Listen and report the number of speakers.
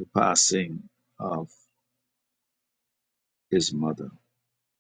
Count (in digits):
1